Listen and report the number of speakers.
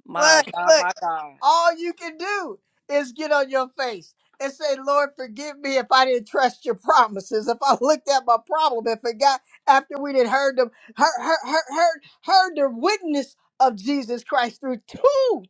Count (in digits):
2